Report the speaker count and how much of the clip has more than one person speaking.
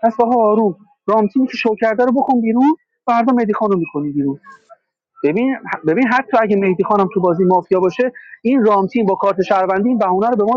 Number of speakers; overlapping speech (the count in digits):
1, no overlap